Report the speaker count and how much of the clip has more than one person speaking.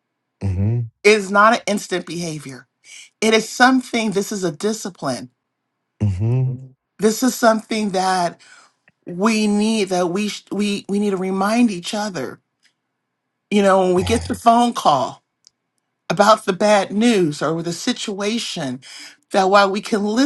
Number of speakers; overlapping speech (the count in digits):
2, about 2%